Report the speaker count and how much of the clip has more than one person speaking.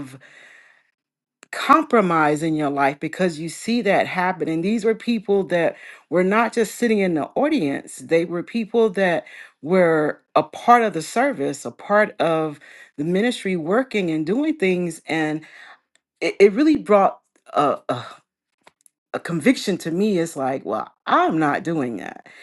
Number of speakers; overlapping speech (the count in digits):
1, no overlap